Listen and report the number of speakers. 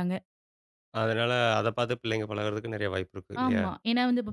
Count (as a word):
two